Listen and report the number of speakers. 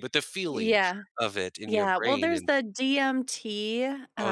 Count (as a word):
two